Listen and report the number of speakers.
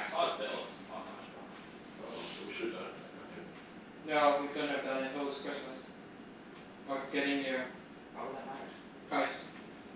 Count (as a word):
three